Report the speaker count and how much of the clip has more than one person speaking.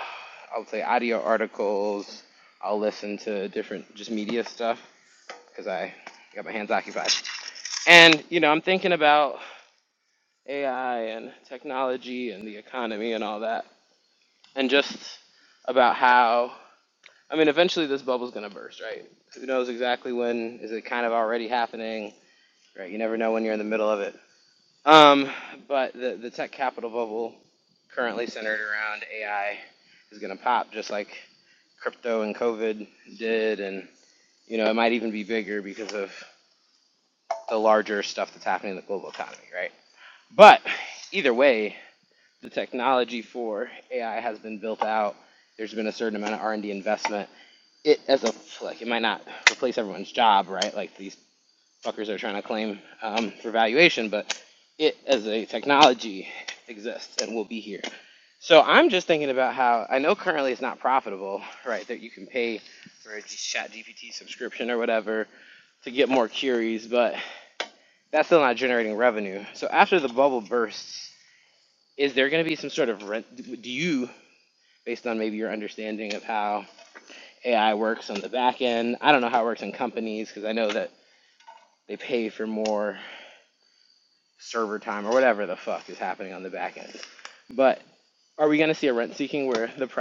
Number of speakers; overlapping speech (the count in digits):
1, no overlap